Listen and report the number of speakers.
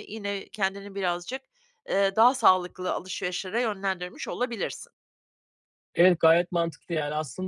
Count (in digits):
2